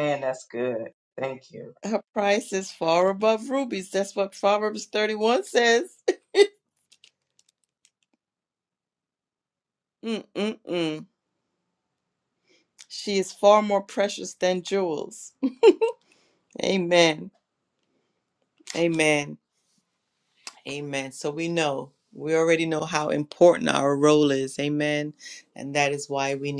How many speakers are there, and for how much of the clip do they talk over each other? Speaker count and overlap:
2, no overlap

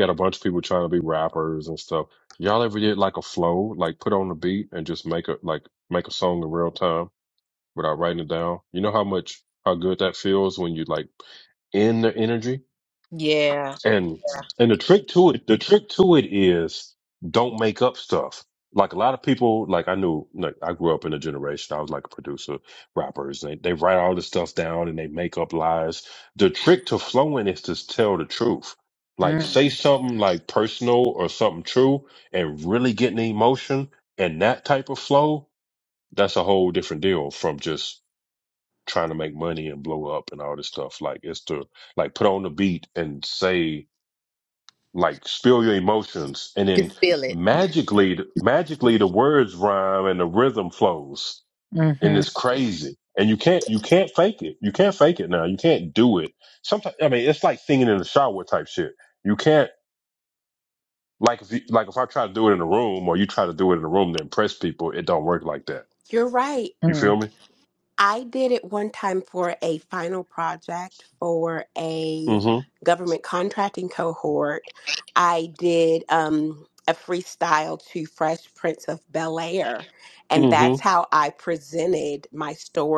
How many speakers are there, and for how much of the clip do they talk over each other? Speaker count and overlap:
3, about 2%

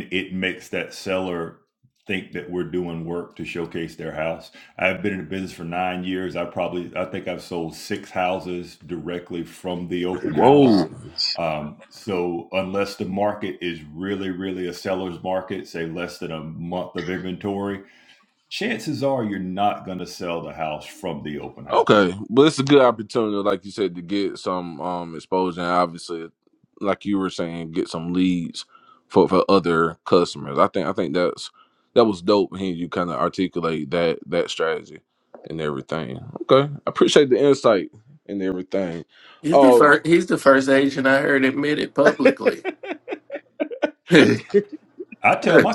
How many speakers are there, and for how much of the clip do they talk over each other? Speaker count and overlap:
3, about 3%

